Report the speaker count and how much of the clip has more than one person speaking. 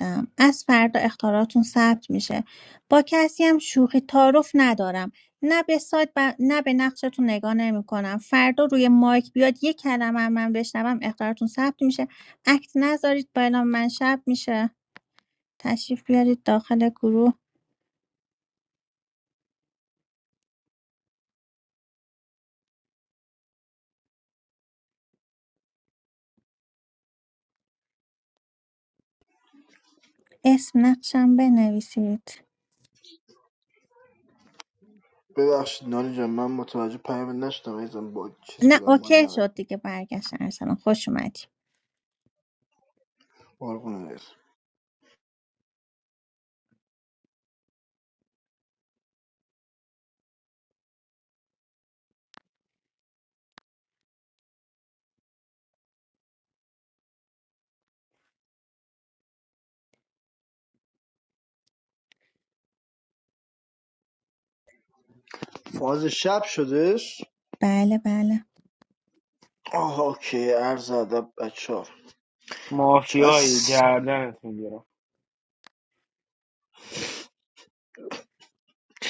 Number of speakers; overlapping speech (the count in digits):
3, about 2%